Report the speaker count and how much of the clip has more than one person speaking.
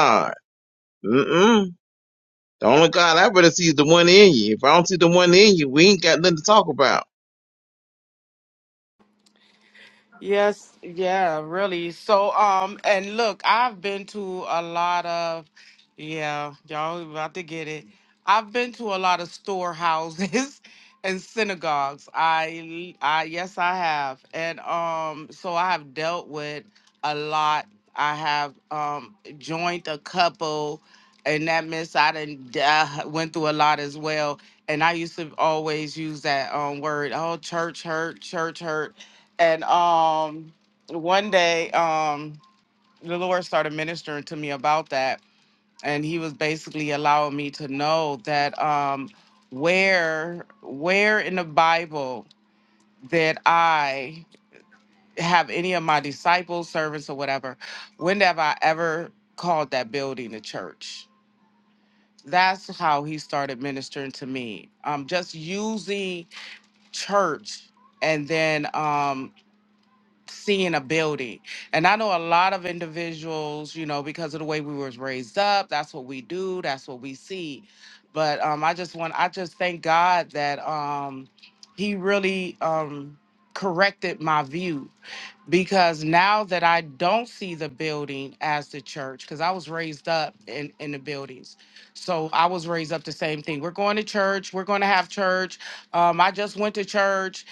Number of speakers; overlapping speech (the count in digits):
2, no overlap